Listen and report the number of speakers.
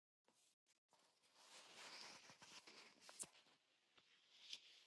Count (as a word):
zero